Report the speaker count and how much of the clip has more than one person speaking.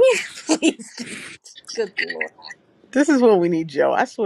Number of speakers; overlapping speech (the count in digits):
2, no overlap